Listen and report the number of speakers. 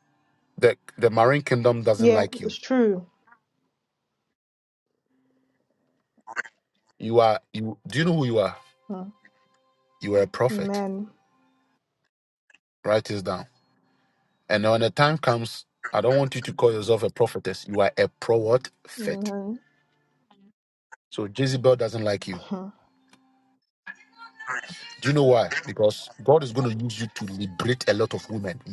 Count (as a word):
two